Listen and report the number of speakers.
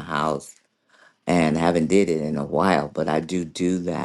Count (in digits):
1